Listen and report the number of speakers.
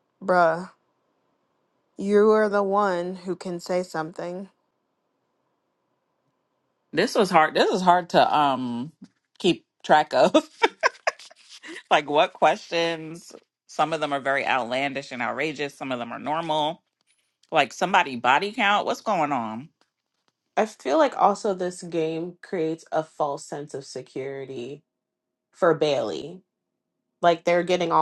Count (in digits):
3